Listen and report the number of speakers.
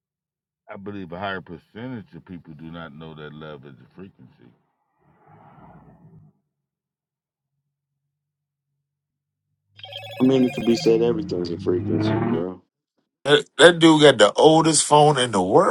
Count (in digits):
3